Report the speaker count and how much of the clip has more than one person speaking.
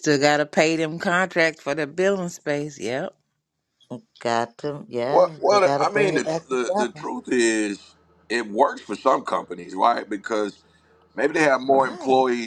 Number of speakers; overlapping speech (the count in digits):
3, about 19%